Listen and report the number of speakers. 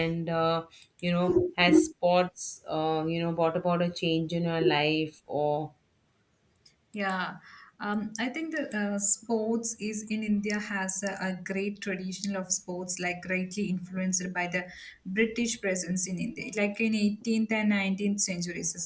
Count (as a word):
two